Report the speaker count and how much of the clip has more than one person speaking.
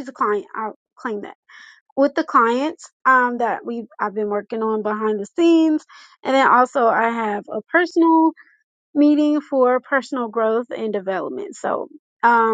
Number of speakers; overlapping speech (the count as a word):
one, no overlap